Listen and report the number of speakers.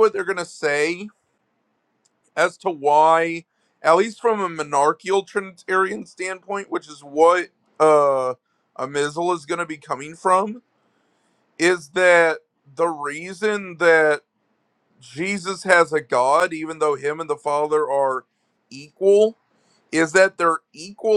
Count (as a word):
one